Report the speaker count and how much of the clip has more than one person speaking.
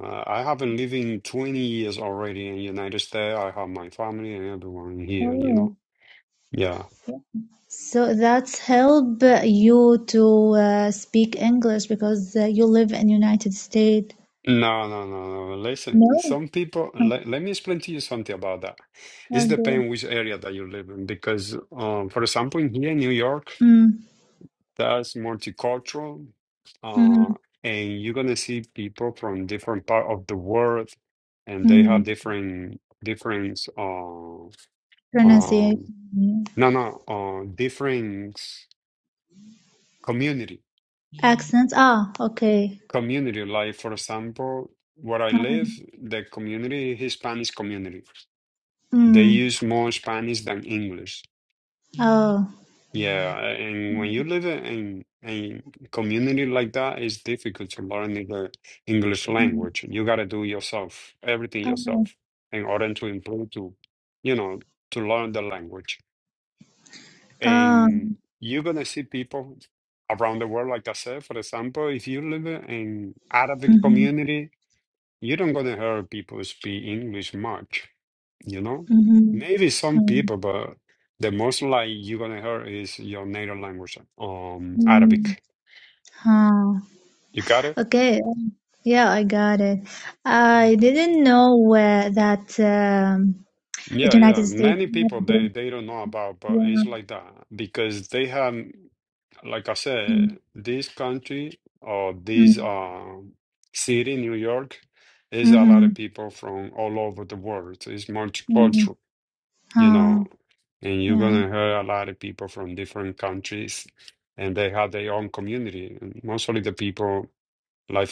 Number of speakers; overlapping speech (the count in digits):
2, about 8%